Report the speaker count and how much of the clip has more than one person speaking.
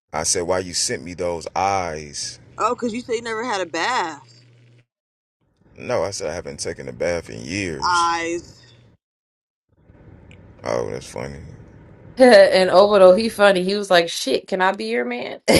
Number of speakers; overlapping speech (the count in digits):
3, about 2%